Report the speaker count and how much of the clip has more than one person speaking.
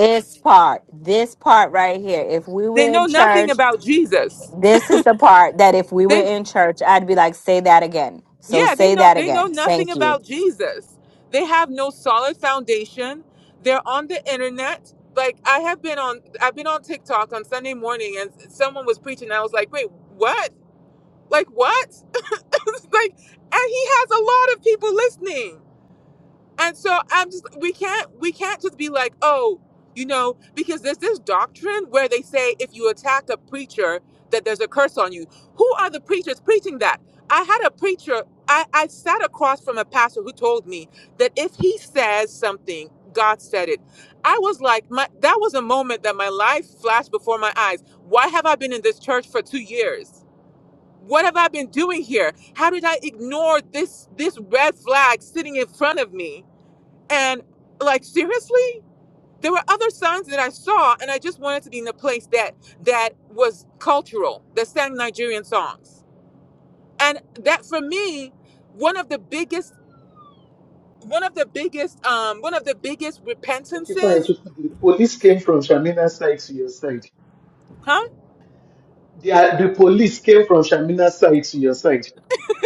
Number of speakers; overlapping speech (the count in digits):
3, about 4%